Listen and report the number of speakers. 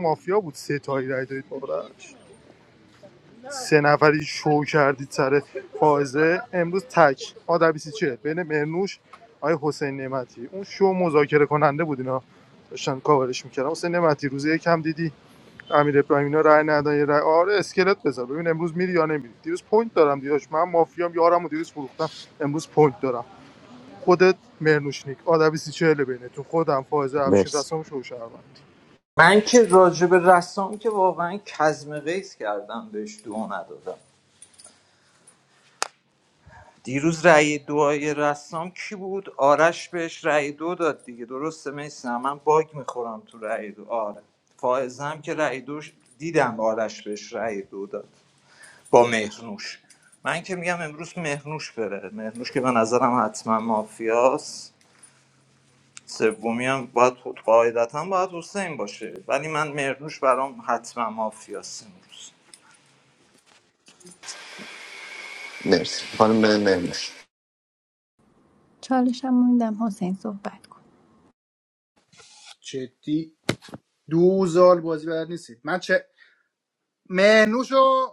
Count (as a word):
five